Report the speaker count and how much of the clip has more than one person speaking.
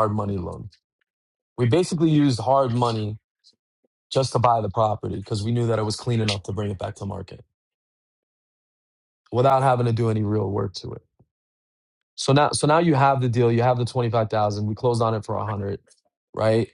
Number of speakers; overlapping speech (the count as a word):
one, no overlap